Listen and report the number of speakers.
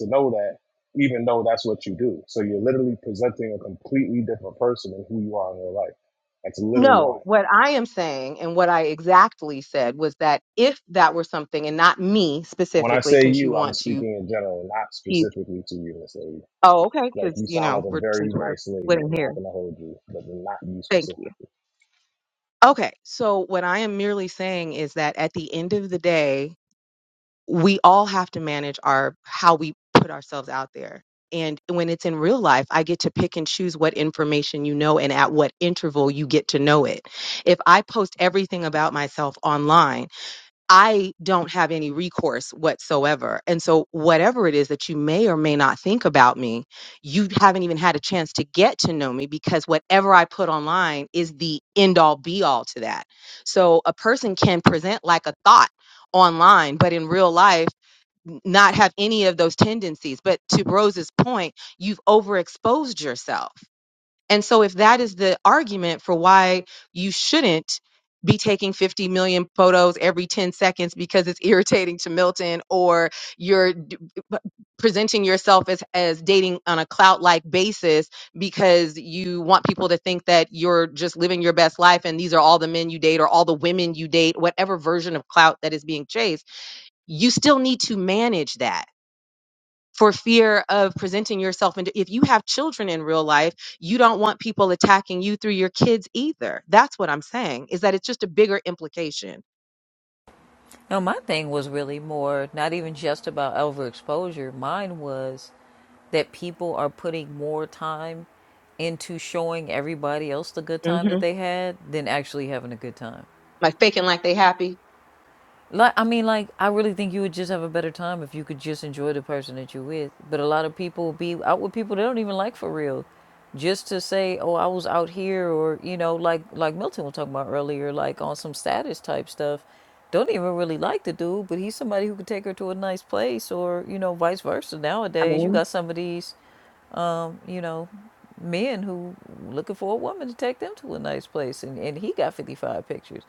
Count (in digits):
3